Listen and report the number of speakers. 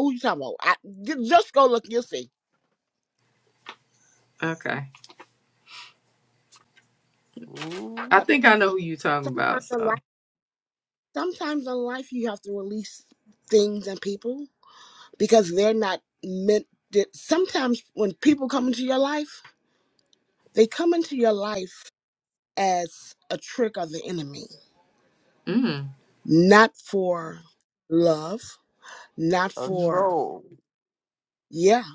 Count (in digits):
3